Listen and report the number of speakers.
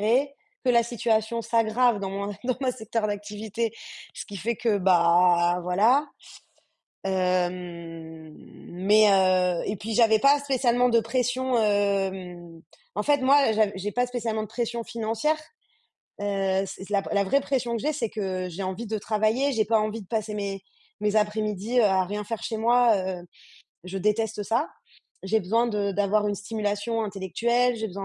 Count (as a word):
one